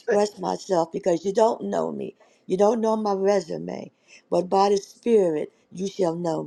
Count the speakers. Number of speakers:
1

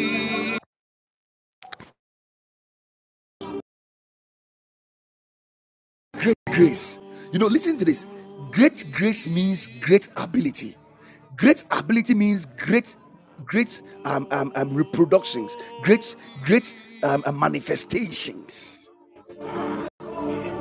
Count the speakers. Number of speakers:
1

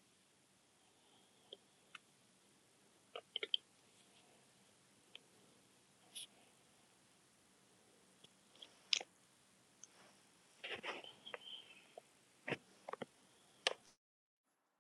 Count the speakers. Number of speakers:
0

